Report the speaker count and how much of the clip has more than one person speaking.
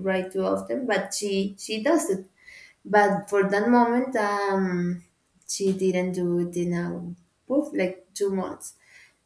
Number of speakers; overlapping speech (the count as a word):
one, no overlap